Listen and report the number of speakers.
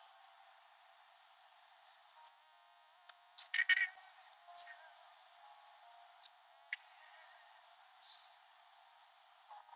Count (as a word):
zero